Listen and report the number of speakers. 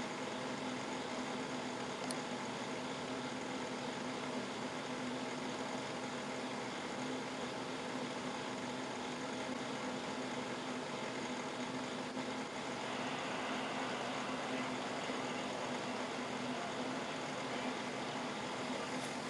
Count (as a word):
zero